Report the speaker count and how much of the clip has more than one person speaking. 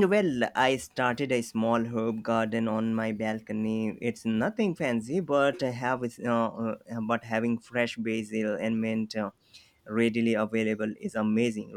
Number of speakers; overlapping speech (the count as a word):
one, no overlap